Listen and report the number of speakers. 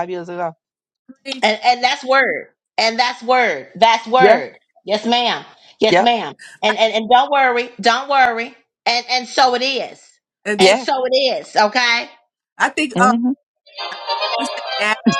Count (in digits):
3